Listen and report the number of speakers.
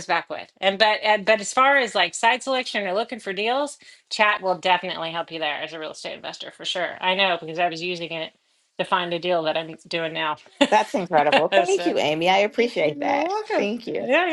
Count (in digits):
2